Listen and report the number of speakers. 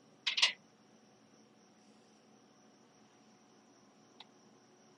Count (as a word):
zero